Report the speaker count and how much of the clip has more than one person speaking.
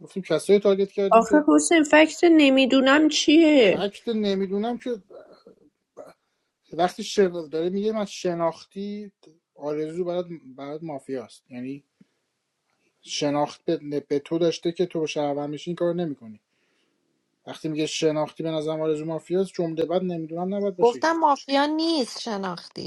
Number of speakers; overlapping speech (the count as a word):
three, about 3%